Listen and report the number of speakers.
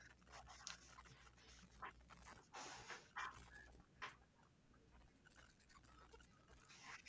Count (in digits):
0